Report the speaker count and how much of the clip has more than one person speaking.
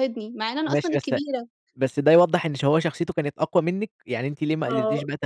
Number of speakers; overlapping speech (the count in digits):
2, about 18%